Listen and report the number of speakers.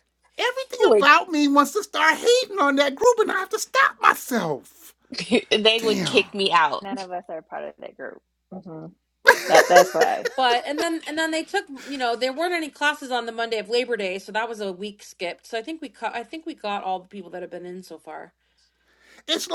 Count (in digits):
4